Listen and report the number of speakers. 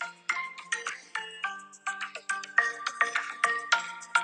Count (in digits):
0